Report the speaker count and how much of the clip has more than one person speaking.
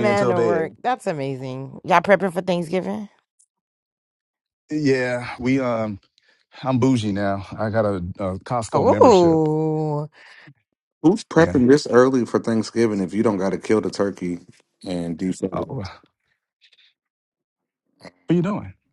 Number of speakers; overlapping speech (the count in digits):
3, about 10%